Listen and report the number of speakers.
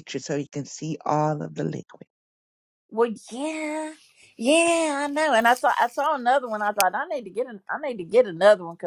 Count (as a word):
two